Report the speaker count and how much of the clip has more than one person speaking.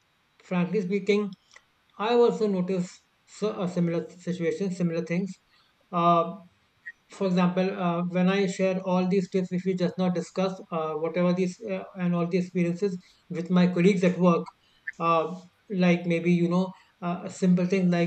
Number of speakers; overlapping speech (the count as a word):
one, no overlap